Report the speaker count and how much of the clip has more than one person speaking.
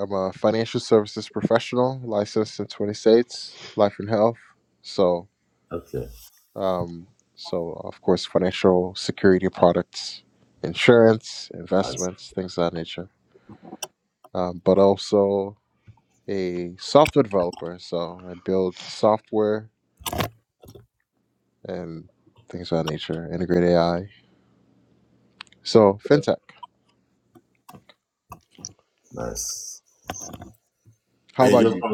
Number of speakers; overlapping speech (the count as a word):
two, about 3%